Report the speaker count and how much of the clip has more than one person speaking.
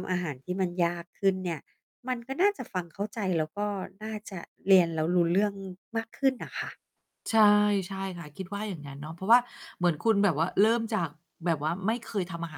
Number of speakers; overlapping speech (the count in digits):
2, no overlap